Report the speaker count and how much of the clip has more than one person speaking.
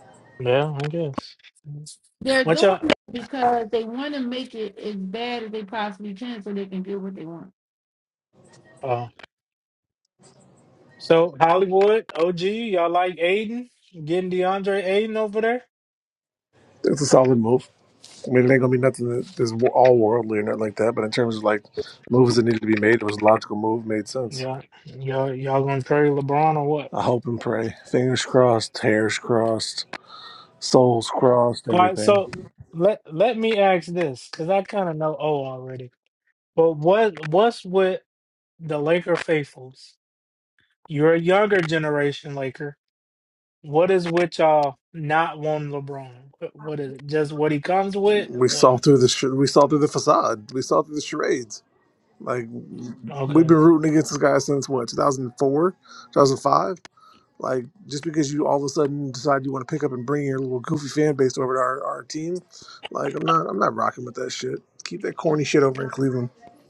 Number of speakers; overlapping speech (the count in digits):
3, about 3%